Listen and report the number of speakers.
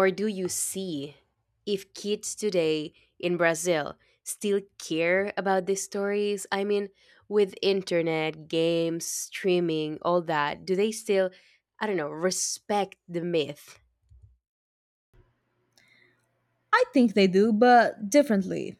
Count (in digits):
2